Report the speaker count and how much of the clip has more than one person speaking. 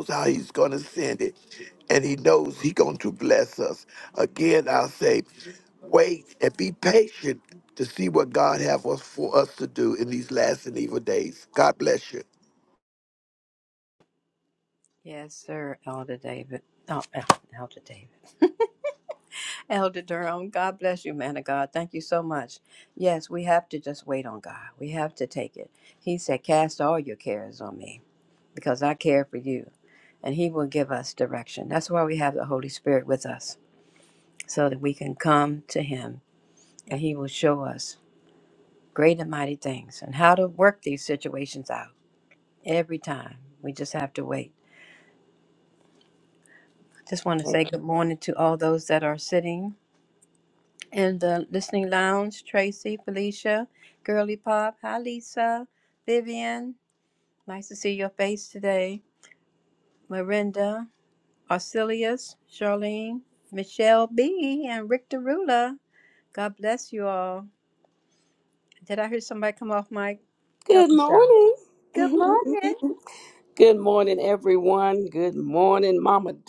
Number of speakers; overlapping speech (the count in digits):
3, about 1%